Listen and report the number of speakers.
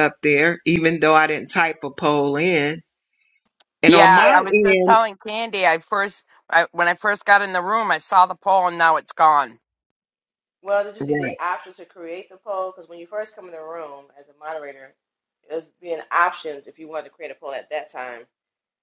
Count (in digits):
3